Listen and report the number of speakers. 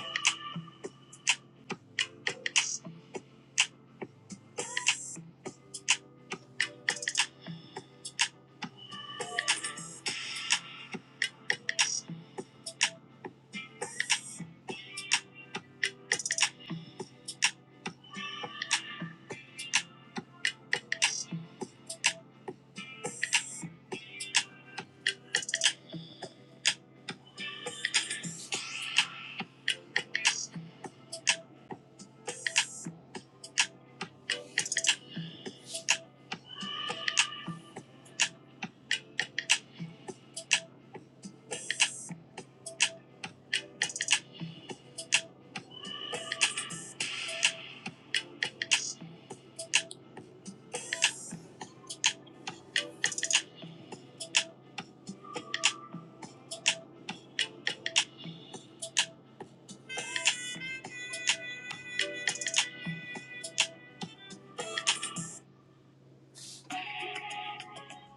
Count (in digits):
0